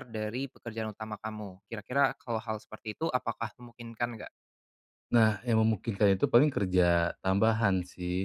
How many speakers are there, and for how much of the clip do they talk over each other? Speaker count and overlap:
two, no overlap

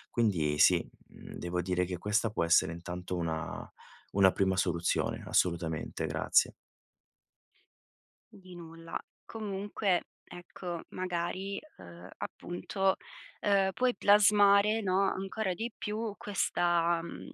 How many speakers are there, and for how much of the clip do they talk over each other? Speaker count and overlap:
two, no overlap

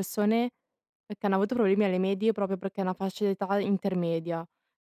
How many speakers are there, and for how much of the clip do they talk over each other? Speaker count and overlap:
one, no overlap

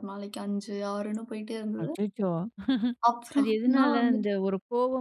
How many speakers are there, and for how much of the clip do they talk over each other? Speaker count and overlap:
two, about 22%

